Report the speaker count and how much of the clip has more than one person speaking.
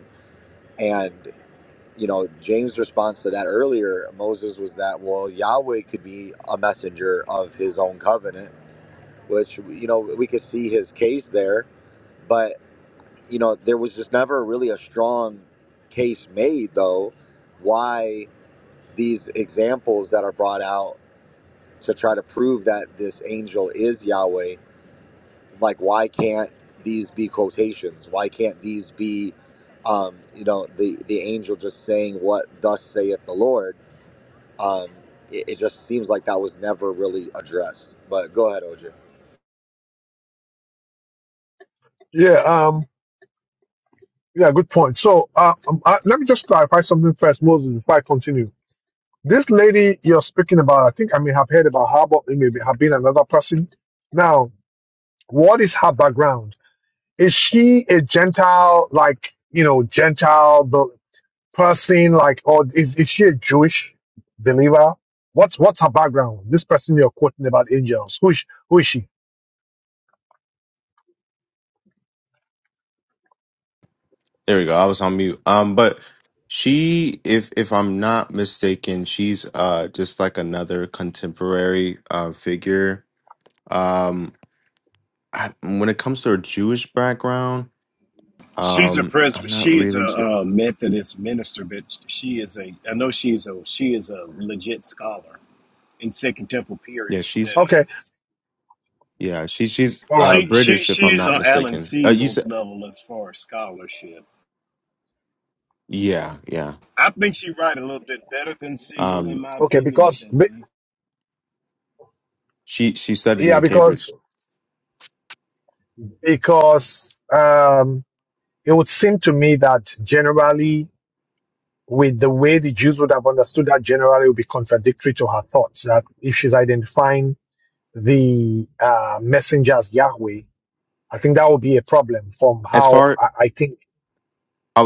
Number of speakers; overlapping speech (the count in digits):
4, about 5%